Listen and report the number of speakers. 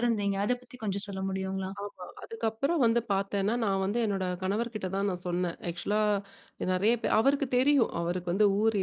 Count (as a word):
two